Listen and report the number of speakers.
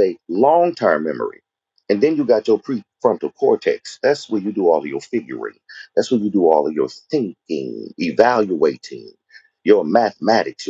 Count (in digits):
1